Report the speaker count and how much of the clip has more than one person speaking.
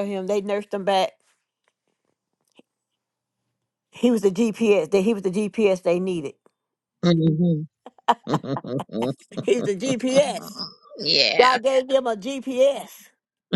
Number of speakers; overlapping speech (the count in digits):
2, about 2%